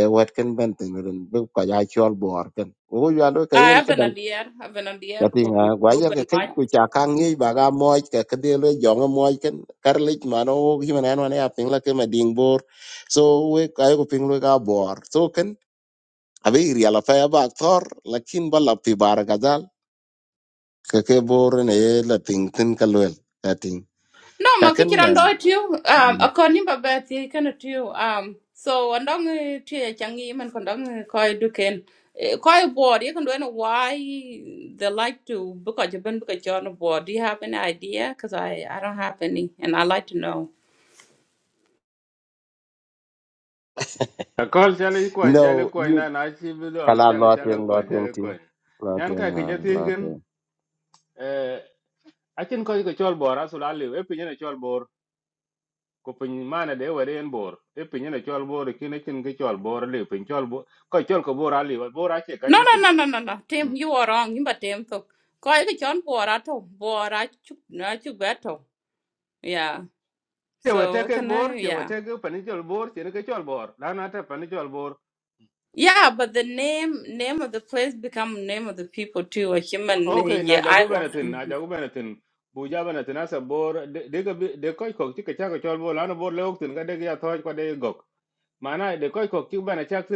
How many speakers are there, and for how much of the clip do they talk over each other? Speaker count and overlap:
3, about 9%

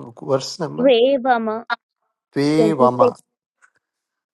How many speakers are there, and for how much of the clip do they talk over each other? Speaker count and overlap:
2, about 13%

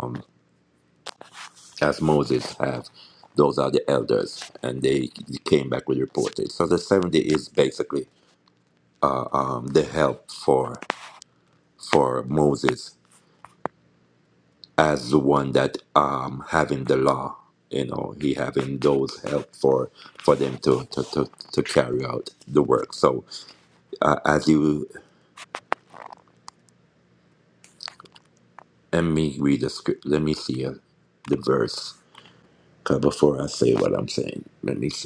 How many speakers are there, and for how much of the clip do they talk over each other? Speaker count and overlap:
1, no overlap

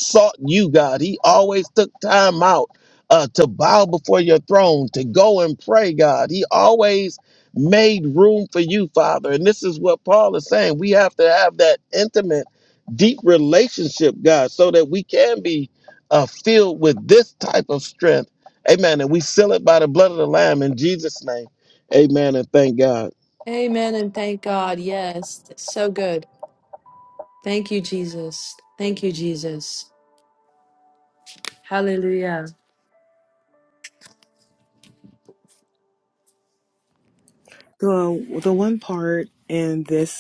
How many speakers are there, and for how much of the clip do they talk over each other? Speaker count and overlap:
3, no overlap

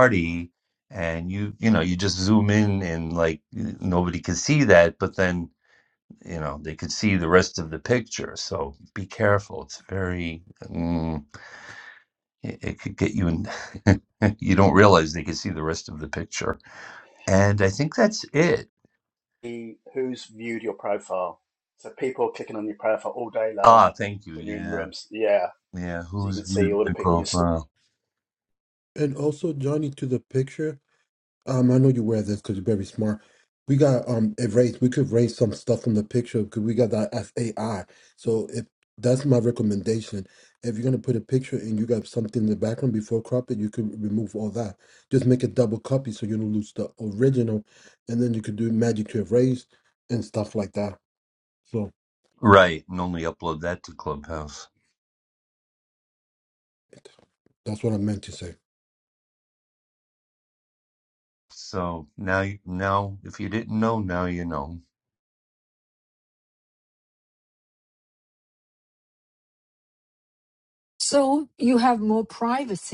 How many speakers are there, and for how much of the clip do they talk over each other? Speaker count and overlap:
4, about 3%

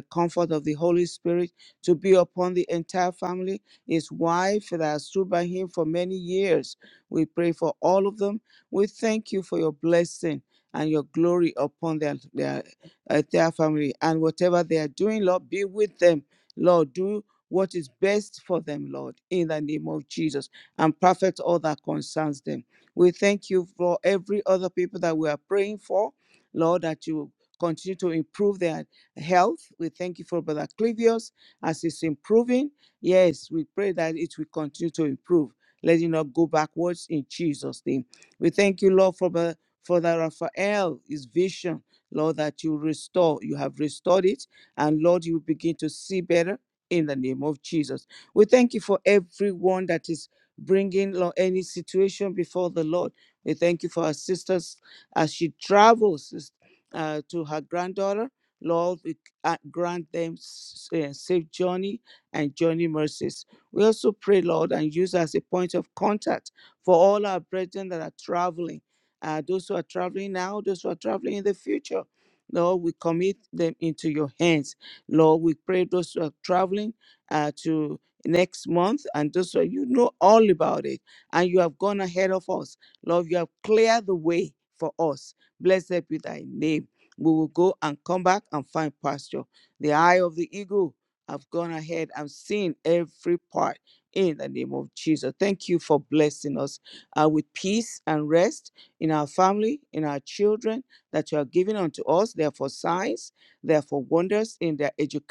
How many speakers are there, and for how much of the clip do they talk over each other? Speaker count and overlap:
1, no overlap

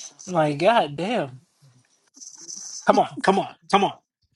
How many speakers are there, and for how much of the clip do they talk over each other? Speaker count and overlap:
1, no overlap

